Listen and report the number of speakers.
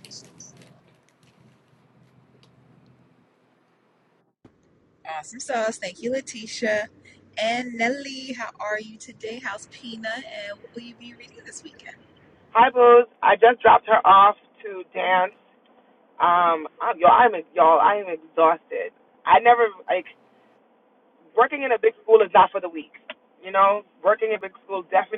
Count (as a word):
two